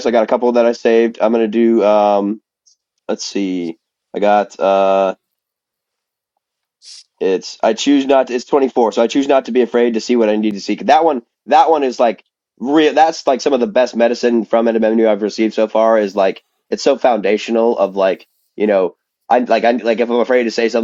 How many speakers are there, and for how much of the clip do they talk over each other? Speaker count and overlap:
1, no overlap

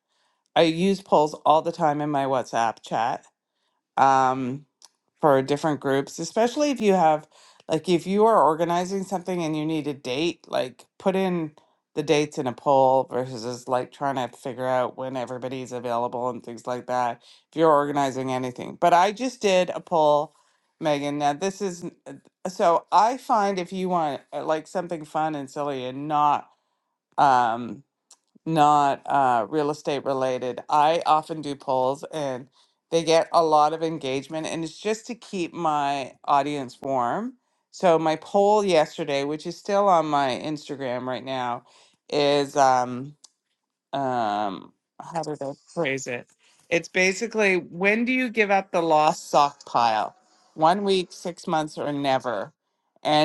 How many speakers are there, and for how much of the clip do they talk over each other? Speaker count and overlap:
1, no overlap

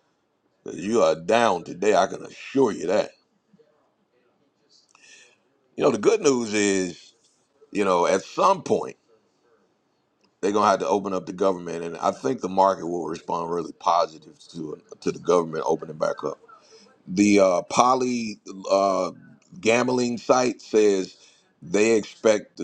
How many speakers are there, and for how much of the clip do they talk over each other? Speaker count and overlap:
1, no overlap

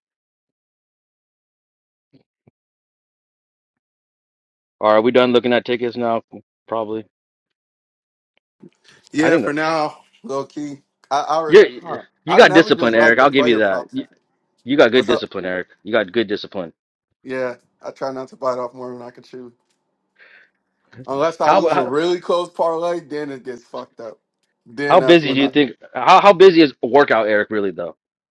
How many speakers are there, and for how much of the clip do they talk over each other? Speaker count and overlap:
2, about 15%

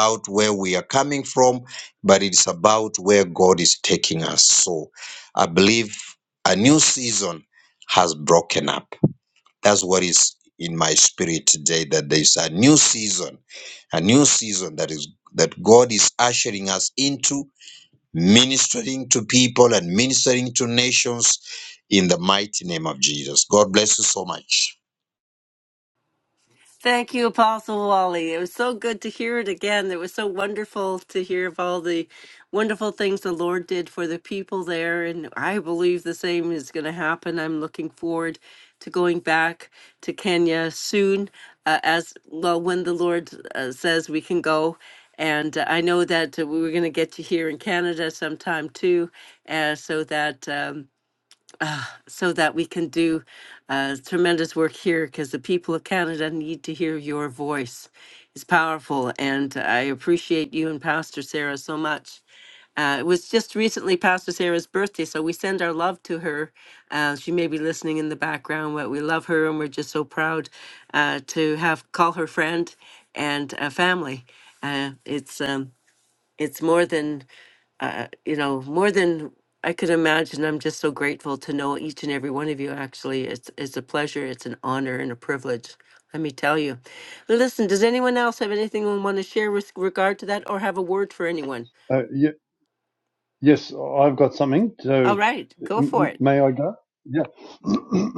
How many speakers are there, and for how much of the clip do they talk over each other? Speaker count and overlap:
3, under 1%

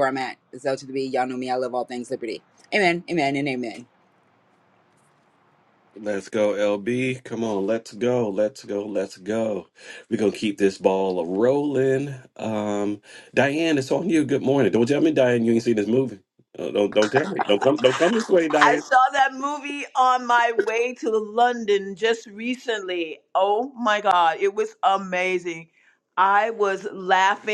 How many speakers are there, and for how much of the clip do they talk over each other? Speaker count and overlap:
3, under 1%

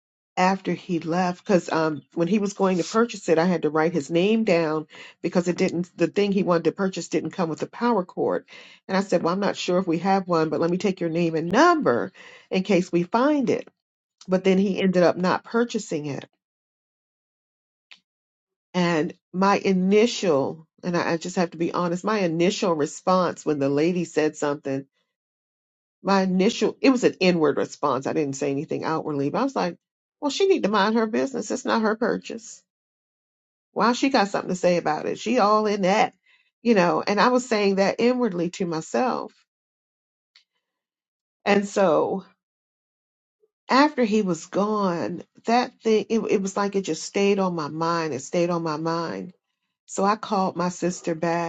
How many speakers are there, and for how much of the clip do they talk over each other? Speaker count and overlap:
1, no overlap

